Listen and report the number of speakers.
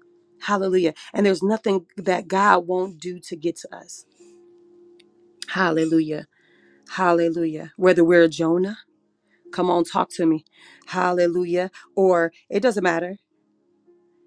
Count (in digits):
1